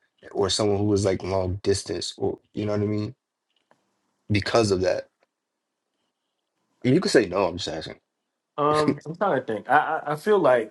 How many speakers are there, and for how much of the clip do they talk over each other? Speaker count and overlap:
two, no overlap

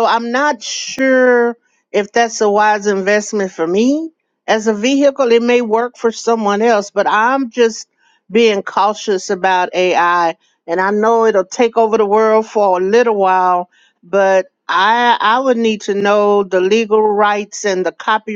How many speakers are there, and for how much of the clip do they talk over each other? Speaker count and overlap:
one, no overlap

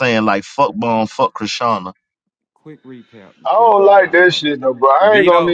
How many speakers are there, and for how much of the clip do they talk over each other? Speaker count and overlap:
three, about 27%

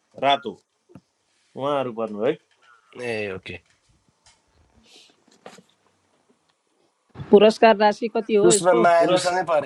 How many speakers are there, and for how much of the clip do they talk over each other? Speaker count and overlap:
three, about 7%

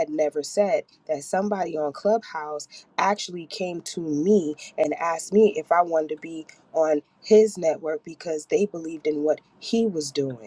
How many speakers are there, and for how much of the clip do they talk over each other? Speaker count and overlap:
one, no overlap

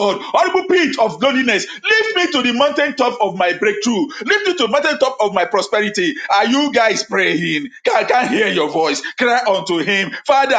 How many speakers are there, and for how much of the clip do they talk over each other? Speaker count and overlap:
one, no overlap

